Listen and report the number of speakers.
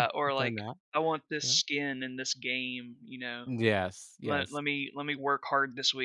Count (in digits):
2